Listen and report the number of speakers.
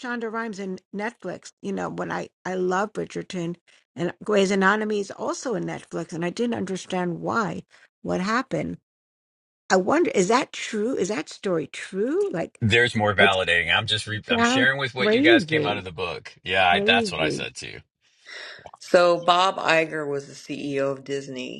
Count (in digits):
3